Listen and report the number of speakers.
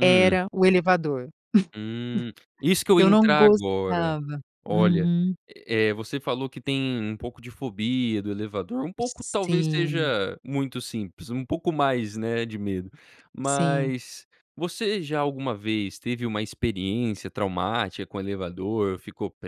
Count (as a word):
two